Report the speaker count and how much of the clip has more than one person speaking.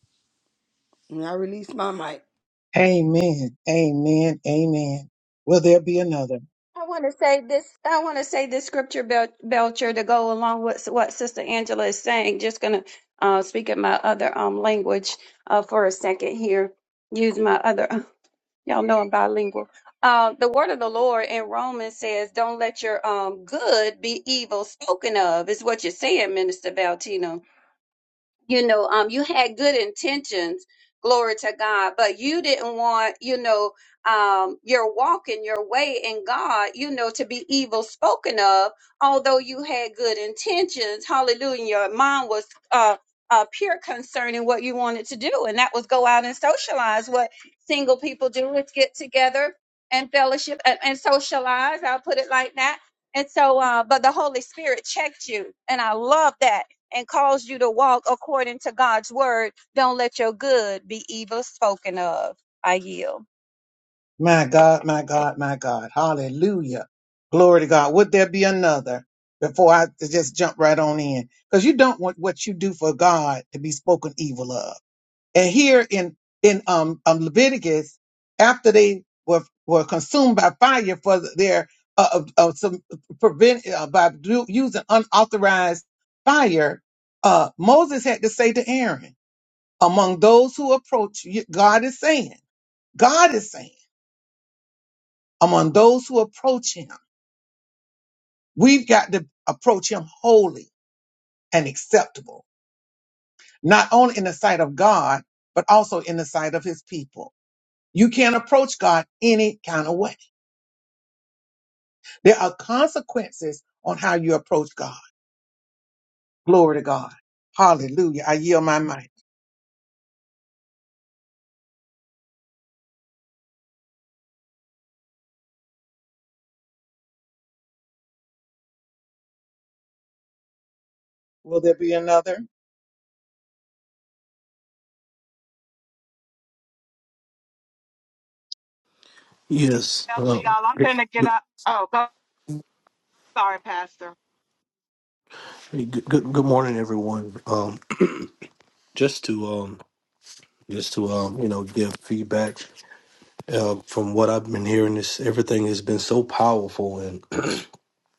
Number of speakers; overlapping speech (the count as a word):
five, under 1%